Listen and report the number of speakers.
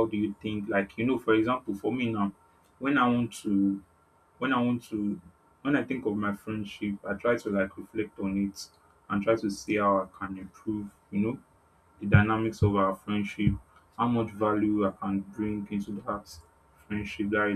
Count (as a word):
one